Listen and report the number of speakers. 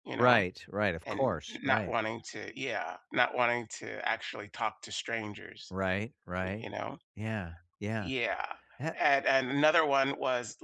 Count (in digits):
2